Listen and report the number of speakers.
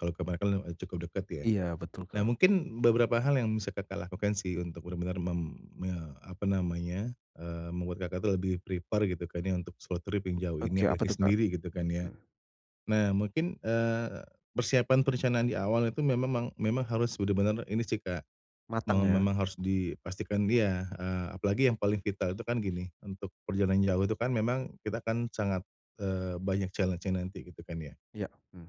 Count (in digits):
2